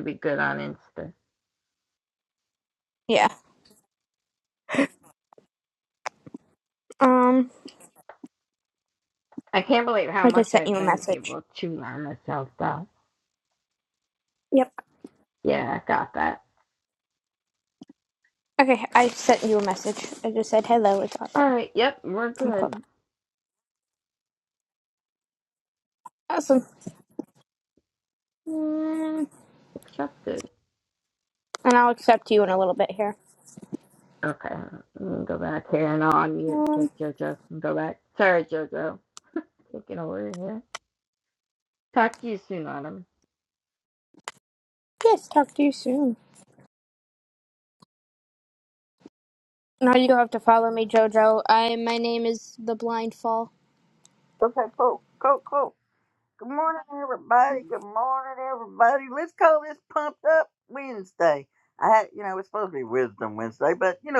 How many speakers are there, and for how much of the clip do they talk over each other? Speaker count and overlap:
3, about 3%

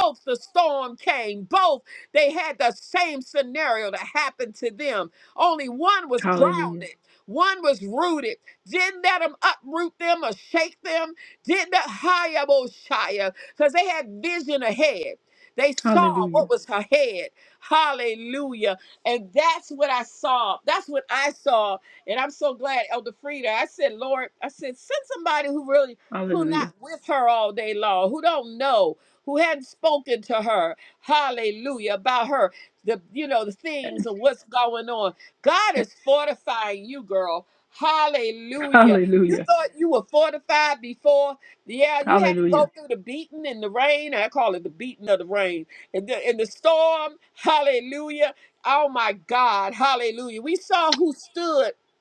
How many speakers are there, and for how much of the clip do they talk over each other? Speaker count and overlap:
2, about 5%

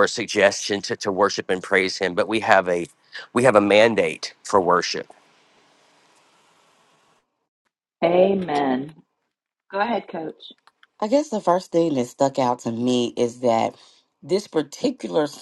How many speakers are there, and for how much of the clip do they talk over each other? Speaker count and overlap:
3, no overlap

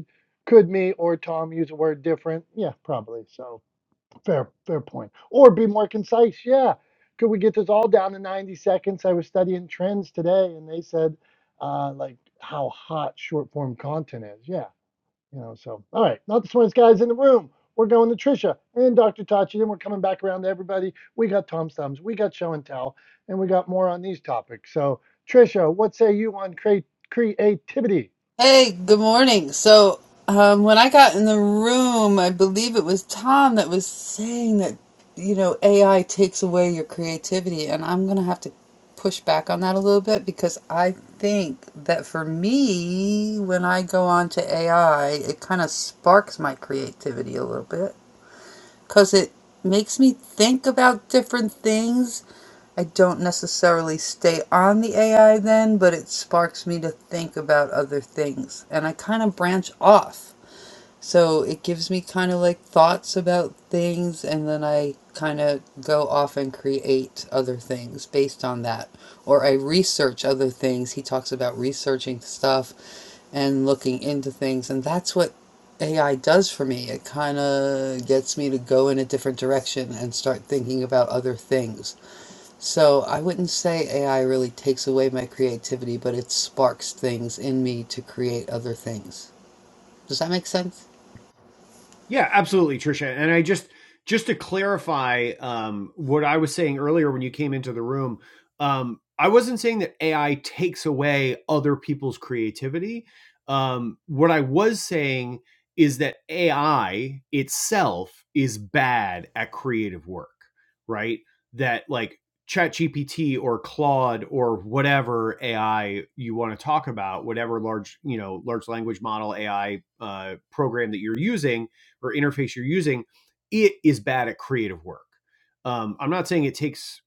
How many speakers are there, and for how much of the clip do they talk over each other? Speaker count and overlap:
3, no overlap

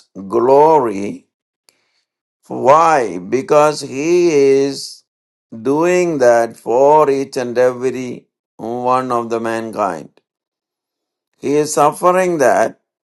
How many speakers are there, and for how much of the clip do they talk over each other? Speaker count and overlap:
1, no overlap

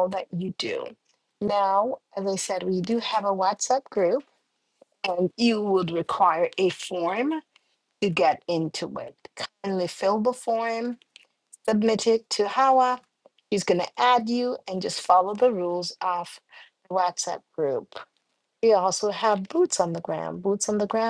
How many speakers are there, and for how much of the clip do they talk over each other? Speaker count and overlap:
1, no overlap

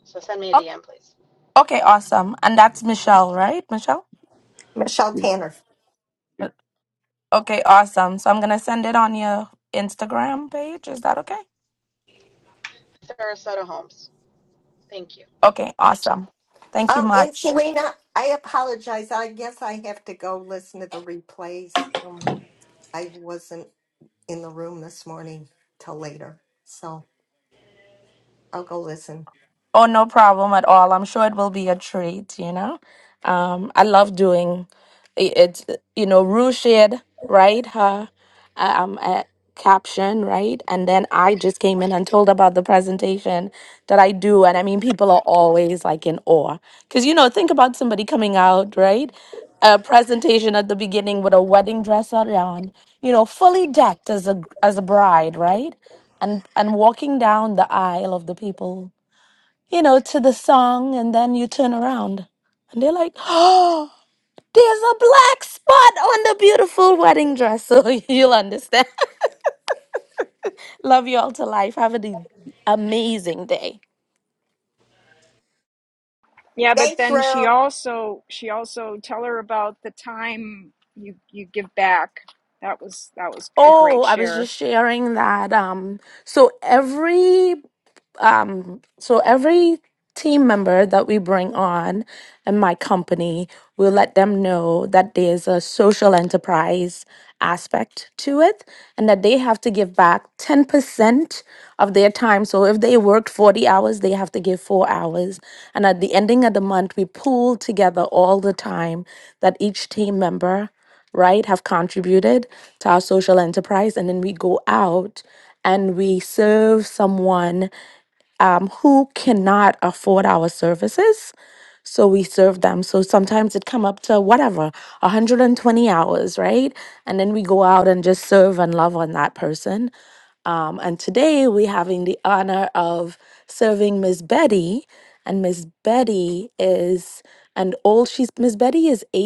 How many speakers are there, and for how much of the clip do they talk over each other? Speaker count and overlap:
4, about 2%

